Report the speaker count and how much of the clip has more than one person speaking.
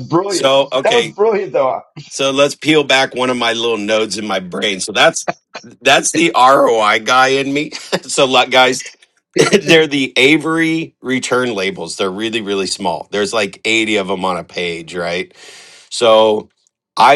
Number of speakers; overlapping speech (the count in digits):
2, about 5%